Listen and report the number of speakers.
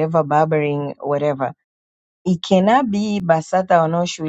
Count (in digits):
1